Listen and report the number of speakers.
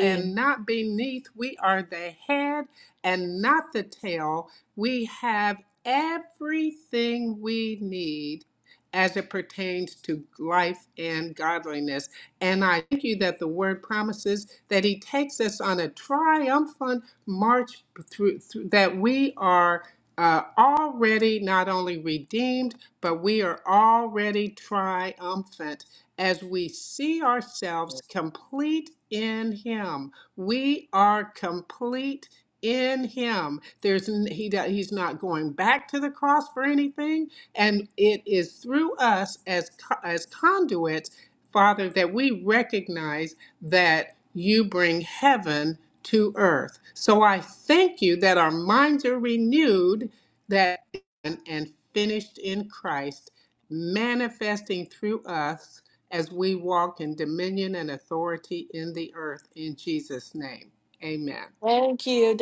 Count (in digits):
2